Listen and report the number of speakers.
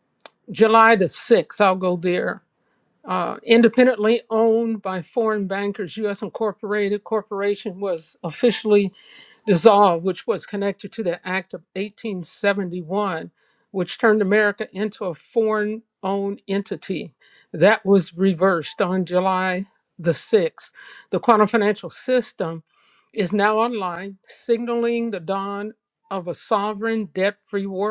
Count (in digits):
1